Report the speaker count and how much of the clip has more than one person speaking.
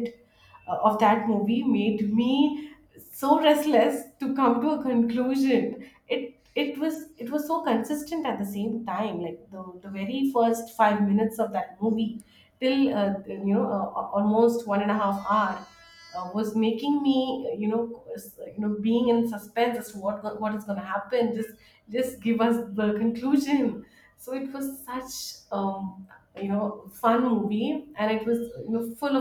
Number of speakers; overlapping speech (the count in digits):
1, no overlap